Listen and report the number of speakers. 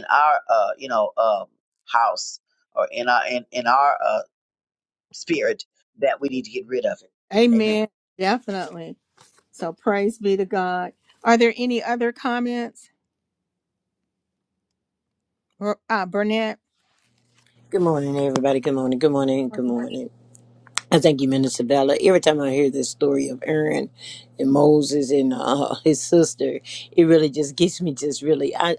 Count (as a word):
three